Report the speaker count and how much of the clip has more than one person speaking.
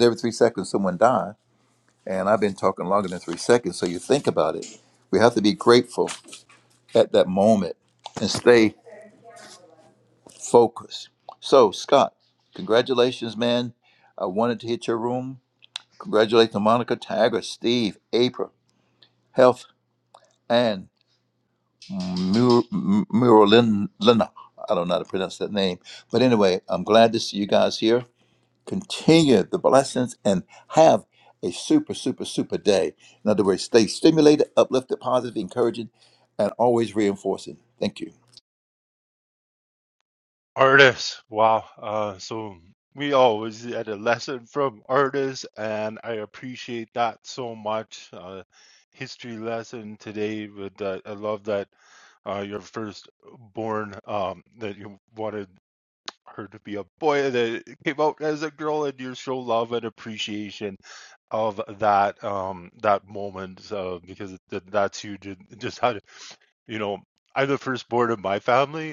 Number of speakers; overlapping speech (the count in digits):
2, no overlap